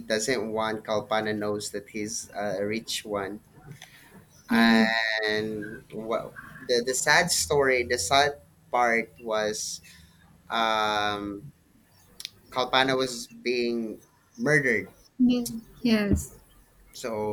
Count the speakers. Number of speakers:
two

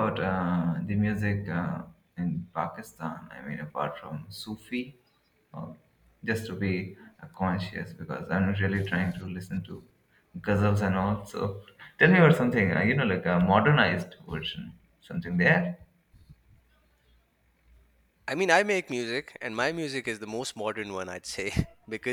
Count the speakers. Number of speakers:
two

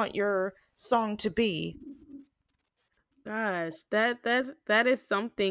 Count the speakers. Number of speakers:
two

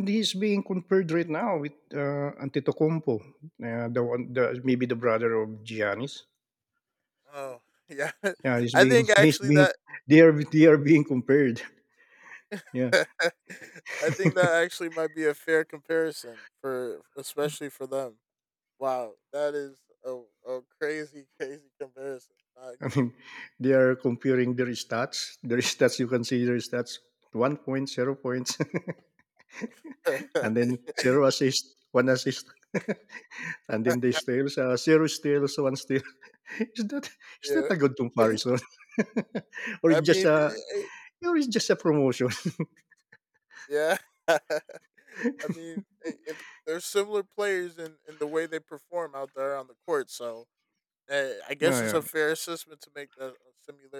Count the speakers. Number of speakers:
two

